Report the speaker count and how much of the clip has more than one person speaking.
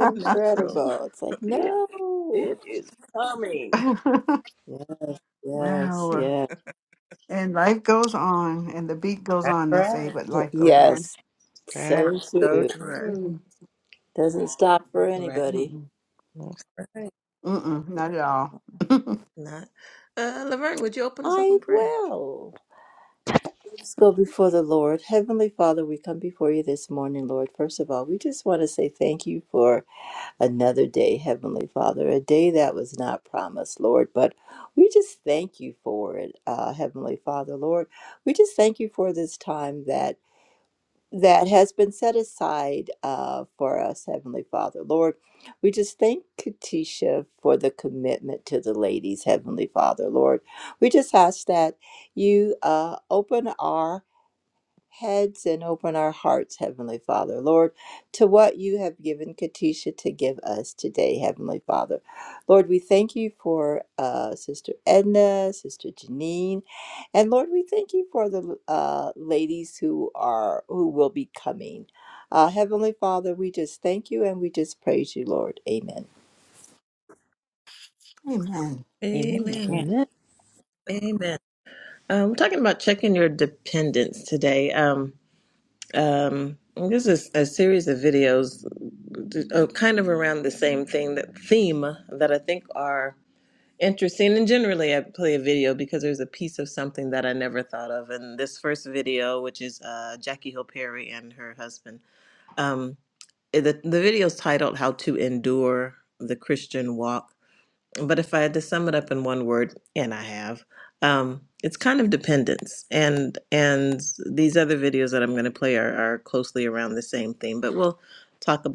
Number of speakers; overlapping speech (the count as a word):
four, about 5%